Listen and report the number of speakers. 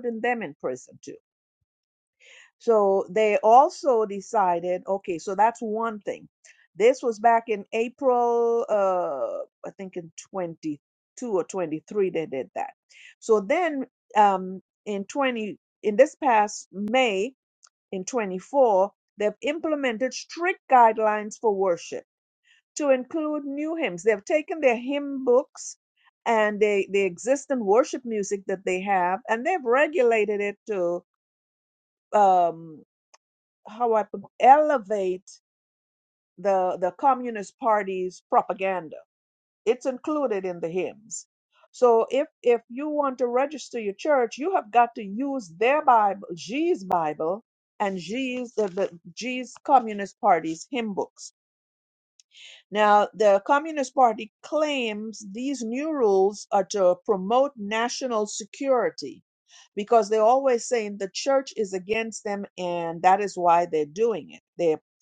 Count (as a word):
one